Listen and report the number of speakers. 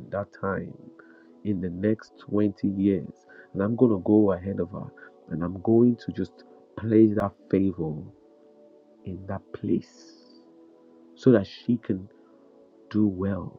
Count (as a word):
one